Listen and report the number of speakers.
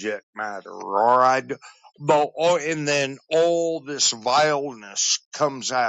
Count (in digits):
1